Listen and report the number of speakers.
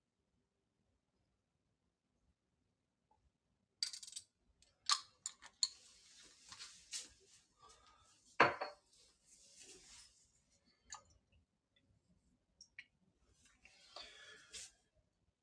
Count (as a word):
zero